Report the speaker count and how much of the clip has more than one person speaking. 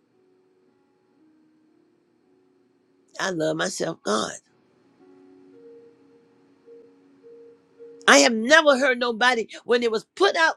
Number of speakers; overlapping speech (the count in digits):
1, no overlap